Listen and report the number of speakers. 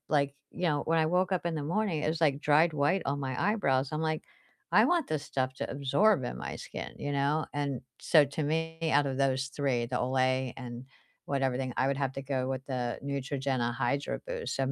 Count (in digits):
1